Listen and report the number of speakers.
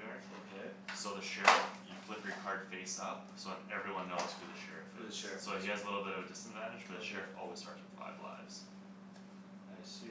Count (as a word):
two